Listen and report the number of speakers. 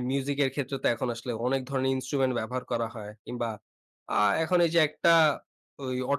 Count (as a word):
one